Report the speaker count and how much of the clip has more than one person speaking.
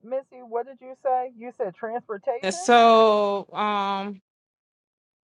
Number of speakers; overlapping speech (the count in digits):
2, about 4%